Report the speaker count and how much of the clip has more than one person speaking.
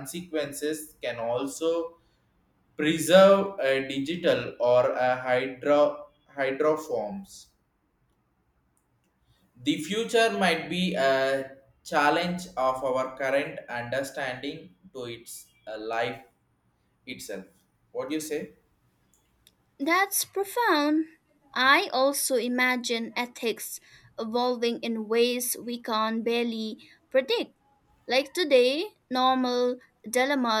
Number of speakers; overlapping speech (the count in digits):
2, no overlap